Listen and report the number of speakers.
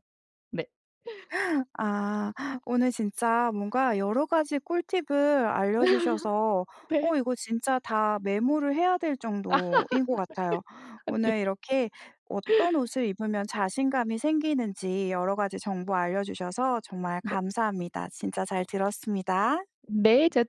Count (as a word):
two